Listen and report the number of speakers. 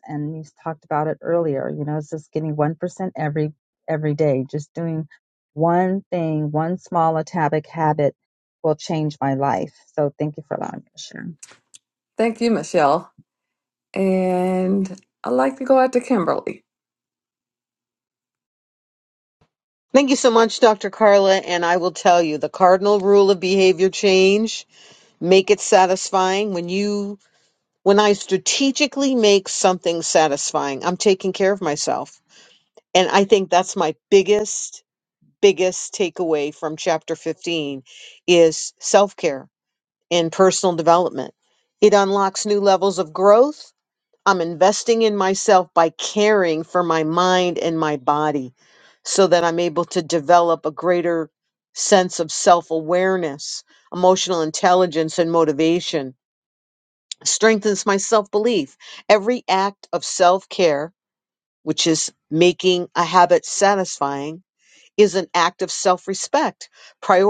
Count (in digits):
3